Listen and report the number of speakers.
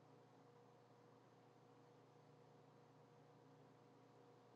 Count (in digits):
0